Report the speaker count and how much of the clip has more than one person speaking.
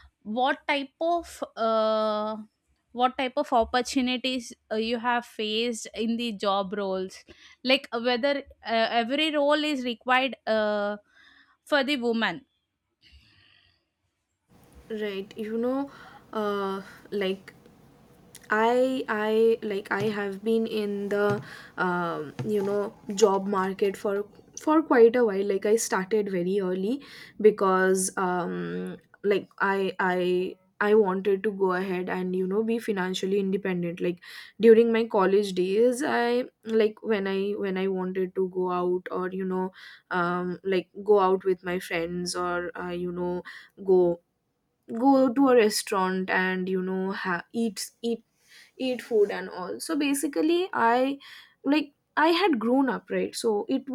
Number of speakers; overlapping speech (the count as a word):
two, no overlap